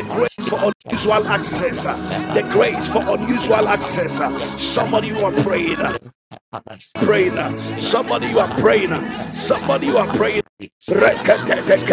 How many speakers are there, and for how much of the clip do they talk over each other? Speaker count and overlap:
2, about 69%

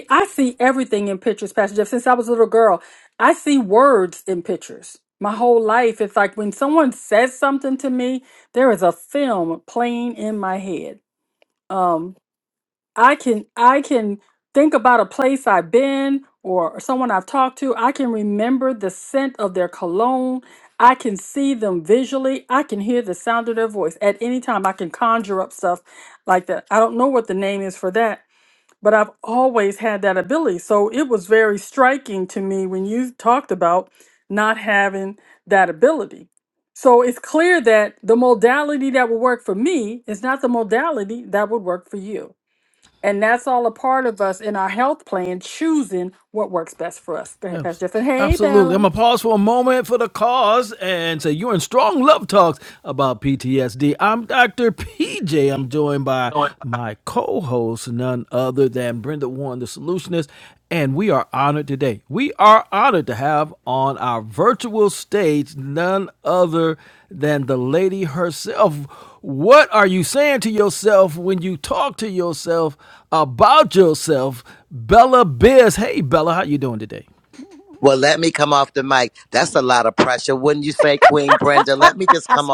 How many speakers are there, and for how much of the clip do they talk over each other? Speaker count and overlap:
3, about 1%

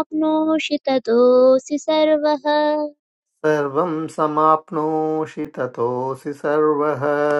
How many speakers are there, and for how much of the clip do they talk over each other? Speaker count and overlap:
2, no overlap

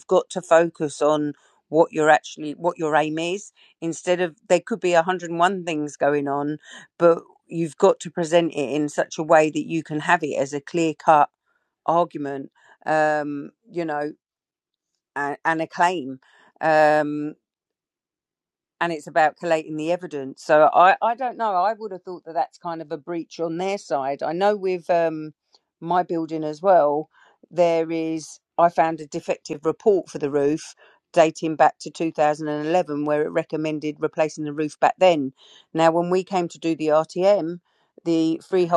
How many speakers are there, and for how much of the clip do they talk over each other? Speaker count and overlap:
1, no overlap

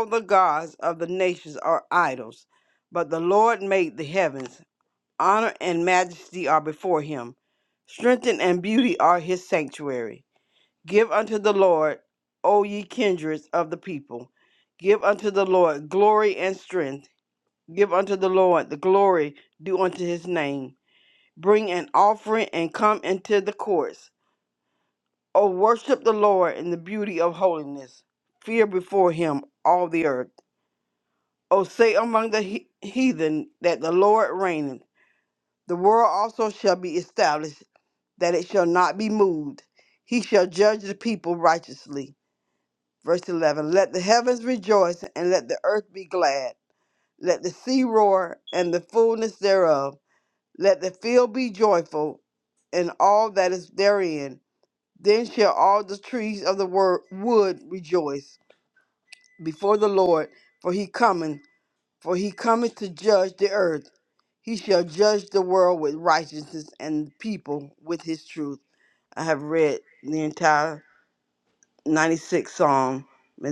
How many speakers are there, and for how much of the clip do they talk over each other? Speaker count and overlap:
1, no overlap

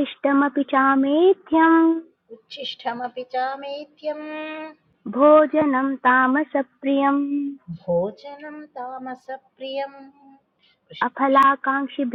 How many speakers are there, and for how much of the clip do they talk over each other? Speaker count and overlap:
2, no overlap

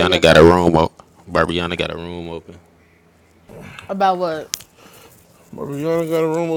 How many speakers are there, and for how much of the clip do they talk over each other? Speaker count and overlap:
3, about 8%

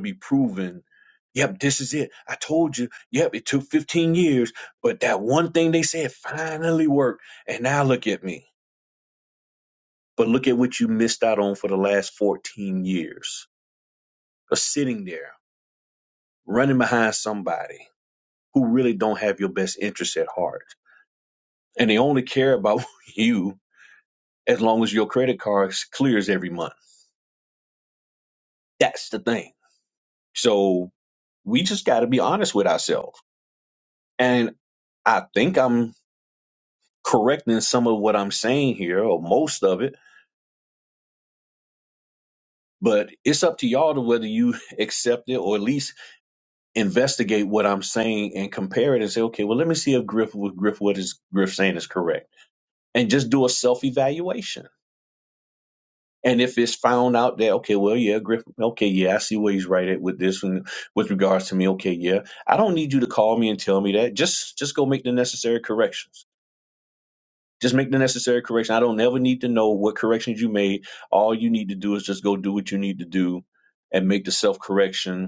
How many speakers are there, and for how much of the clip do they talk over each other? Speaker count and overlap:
1, no overlap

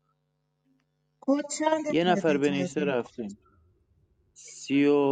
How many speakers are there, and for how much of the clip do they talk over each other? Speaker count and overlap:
2, about 20%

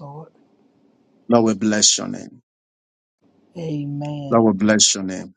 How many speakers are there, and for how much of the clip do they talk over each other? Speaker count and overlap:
2, about 1%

